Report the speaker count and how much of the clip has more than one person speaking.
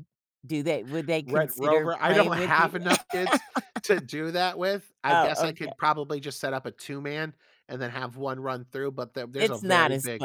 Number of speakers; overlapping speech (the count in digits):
2, about 30%